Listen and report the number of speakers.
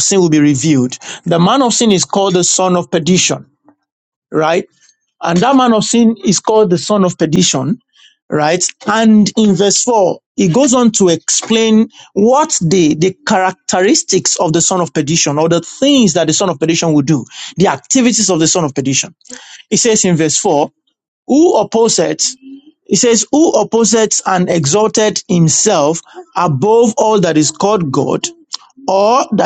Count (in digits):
1